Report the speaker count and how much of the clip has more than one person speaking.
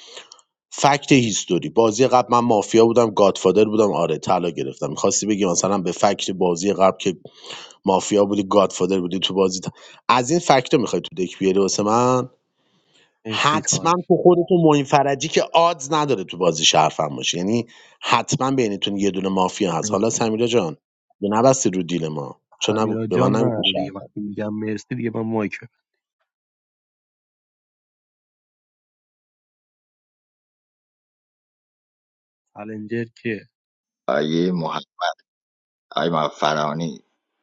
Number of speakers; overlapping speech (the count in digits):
3, about 6%